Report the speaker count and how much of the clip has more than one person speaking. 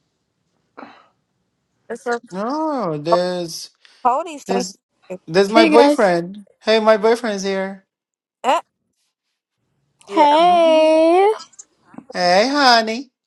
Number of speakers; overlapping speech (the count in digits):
3, about 10%